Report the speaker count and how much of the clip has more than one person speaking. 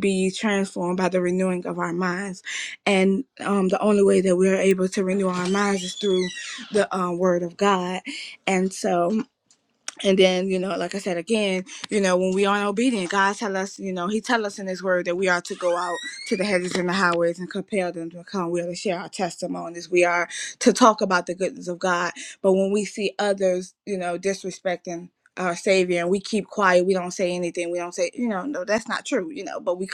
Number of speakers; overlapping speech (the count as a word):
one, no overlap